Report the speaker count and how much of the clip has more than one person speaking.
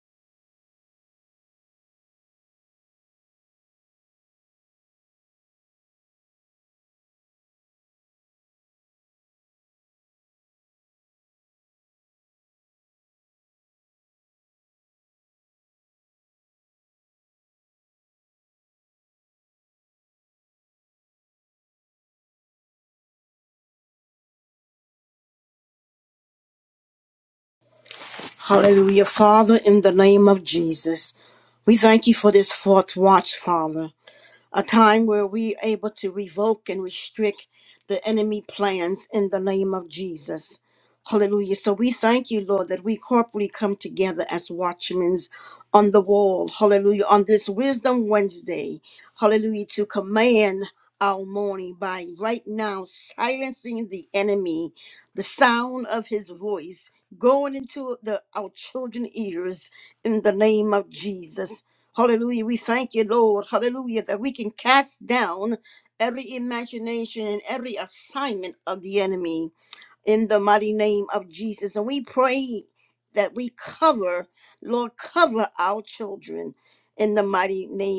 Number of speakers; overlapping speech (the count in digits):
1, no overlap